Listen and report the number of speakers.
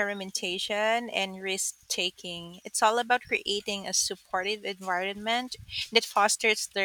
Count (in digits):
1